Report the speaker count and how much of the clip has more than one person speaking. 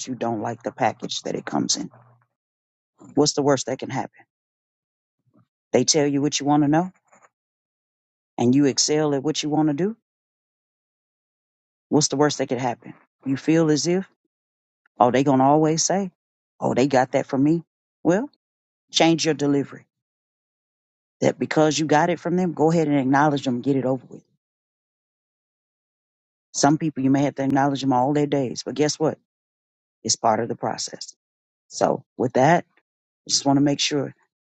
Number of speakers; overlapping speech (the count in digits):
1, no overlap